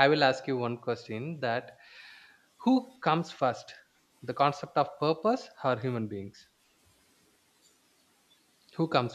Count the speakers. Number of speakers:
one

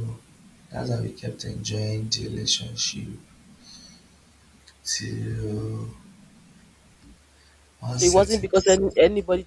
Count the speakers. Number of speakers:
two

